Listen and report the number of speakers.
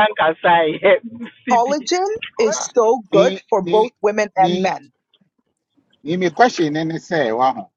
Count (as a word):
three